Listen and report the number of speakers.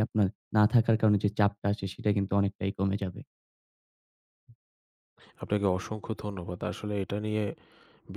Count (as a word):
two